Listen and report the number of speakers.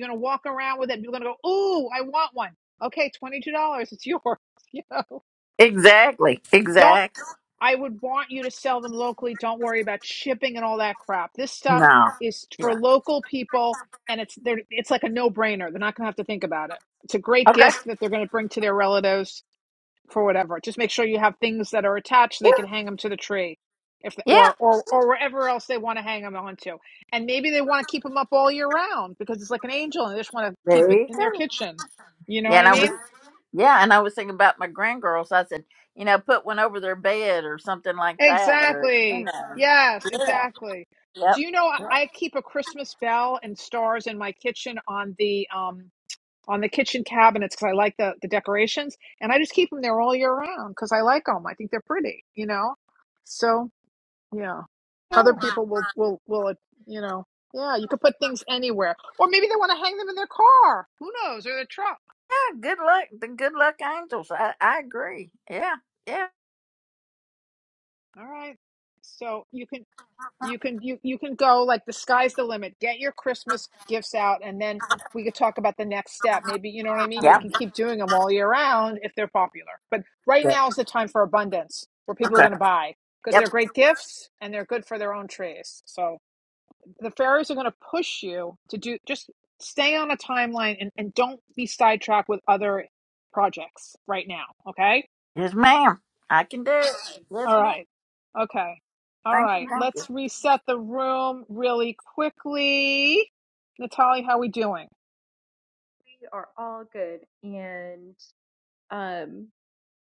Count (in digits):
3